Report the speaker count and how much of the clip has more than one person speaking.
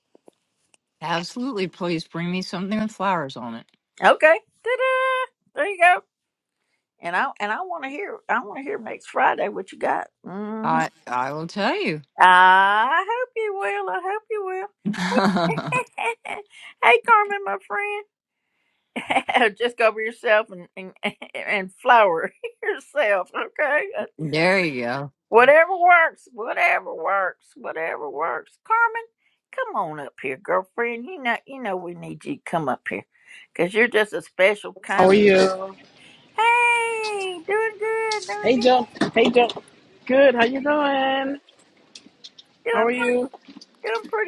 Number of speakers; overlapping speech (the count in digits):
3, about 3%